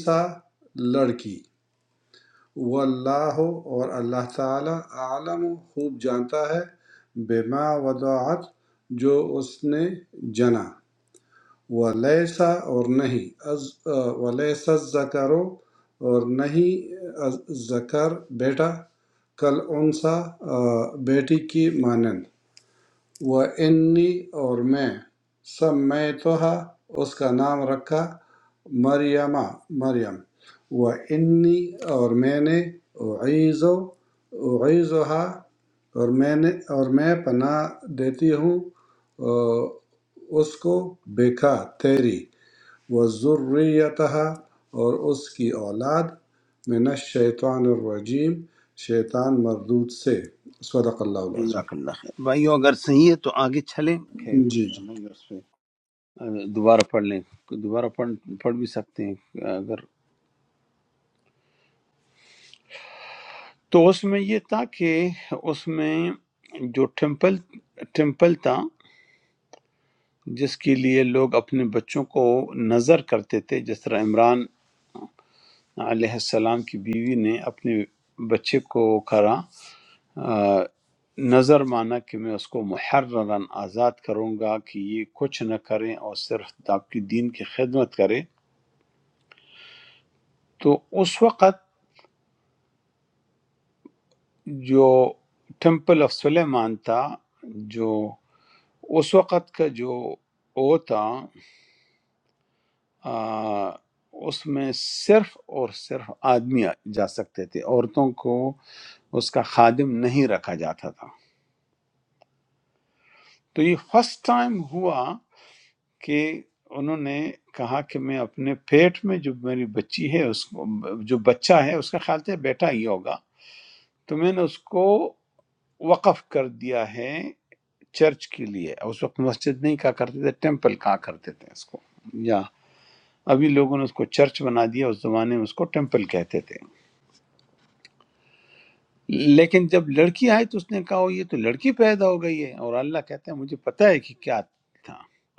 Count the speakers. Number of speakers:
two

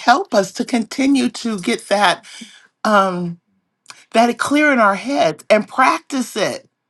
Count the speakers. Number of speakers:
one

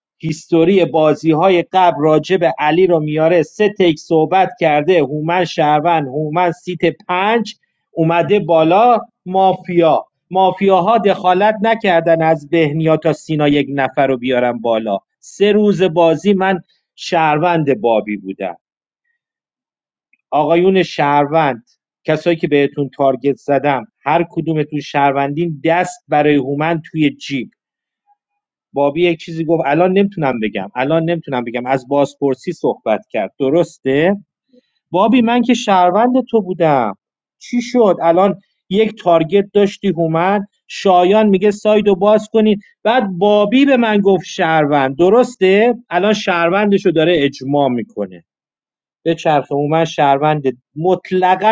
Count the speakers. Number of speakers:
one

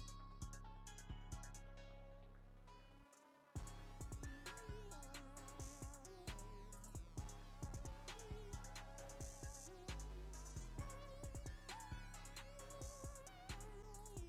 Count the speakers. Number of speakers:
zero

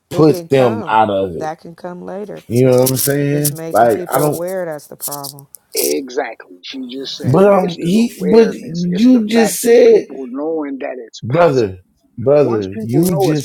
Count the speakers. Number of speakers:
three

